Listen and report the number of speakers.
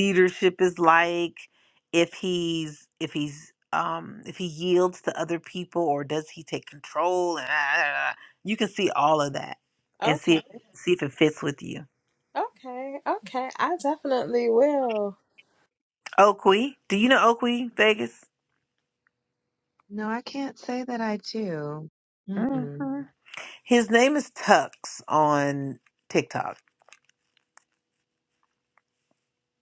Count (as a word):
three